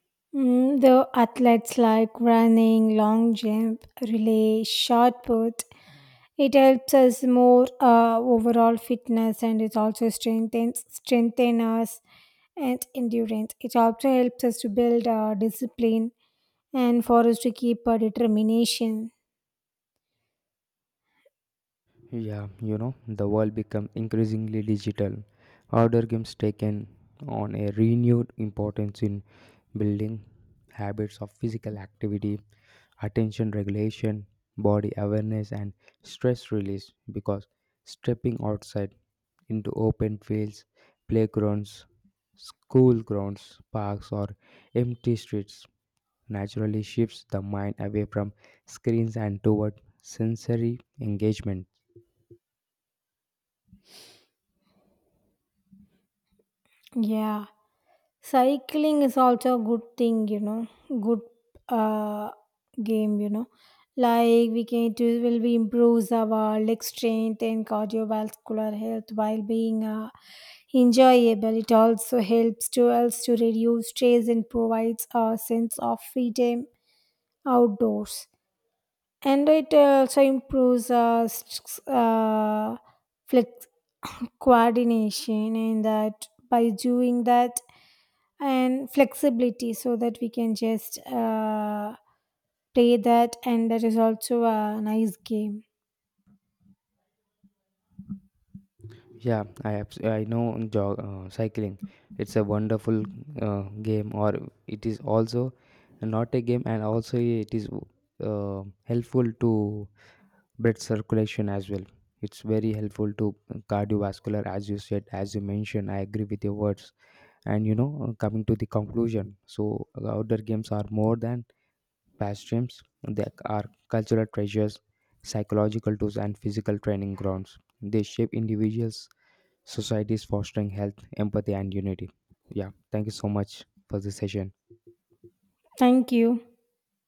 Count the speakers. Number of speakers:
2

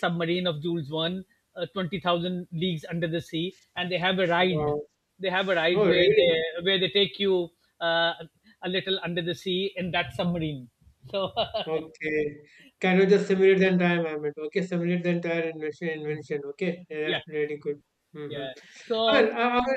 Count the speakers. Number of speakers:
2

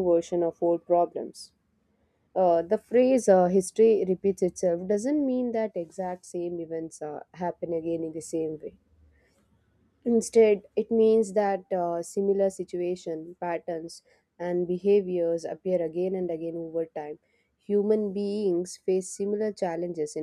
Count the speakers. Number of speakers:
1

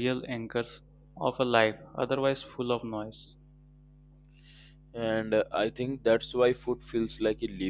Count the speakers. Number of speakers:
2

